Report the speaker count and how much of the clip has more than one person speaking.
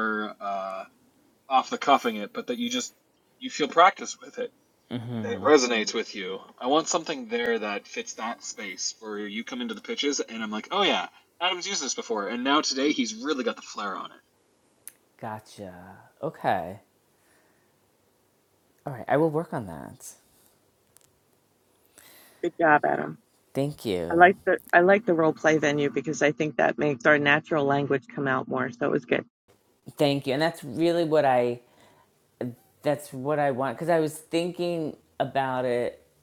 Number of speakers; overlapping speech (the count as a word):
three, under 1%